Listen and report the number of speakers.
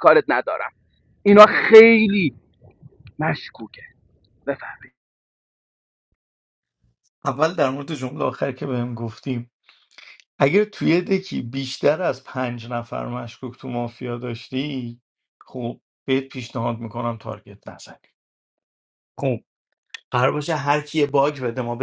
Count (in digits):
2